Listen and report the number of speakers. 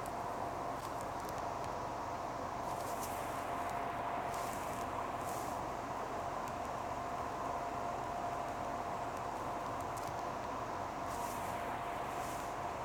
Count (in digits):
0